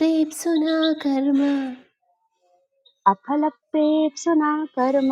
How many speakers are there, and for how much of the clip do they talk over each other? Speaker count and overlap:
2, no overlap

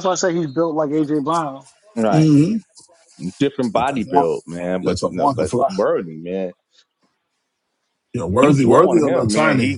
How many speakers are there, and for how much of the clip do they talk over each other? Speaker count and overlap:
3, about 30%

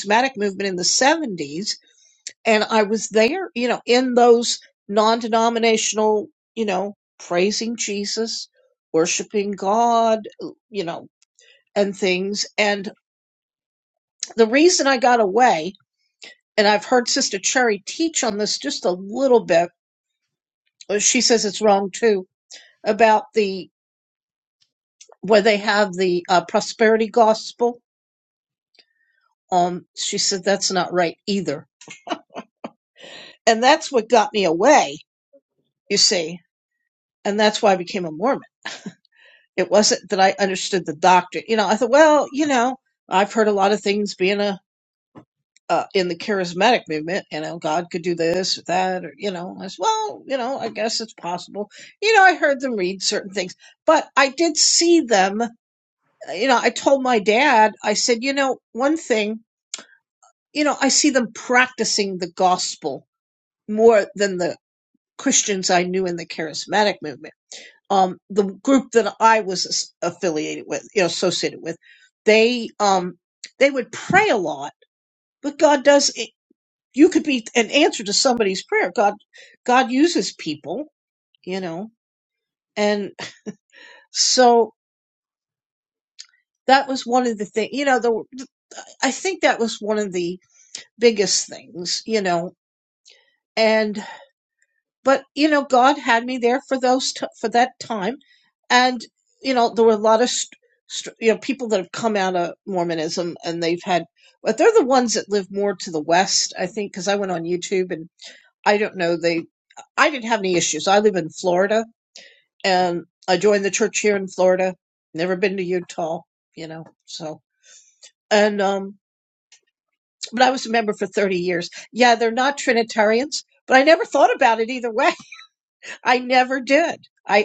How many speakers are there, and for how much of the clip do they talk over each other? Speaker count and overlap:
1, no overlap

